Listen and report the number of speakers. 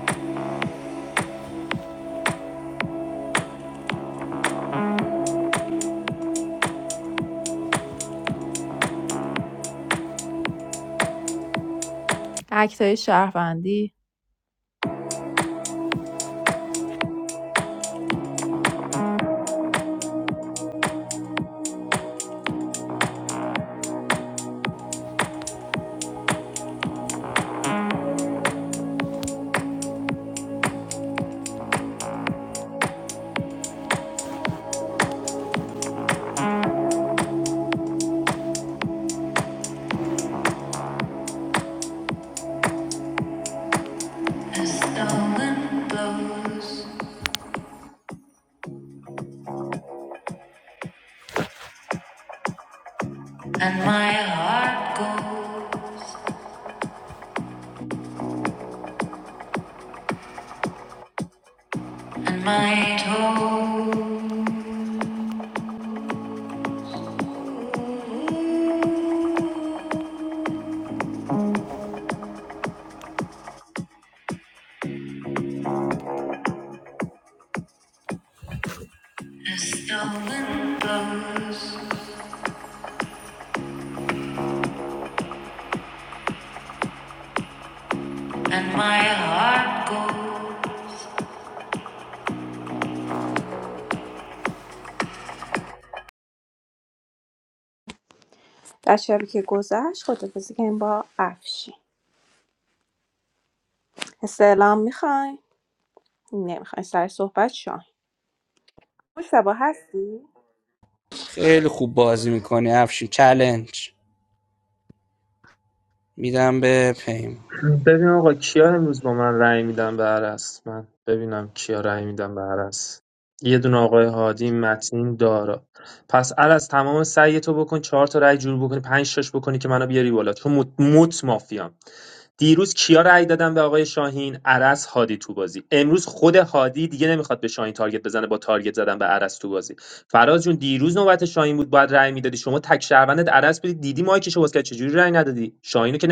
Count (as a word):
three